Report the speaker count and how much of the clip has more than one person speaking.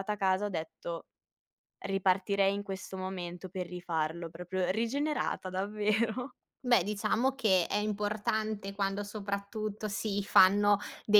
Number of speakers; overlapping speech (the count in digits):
2, no overlap